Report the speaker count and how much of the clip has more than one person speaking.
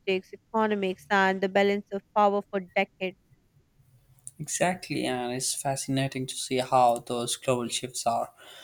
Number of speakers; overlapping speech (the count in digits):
2, no overlap